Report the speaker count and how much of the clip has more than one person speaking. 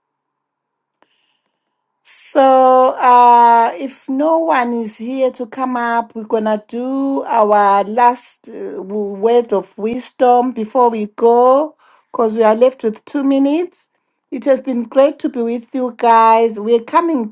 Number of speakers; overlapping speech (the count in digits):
1, no overlap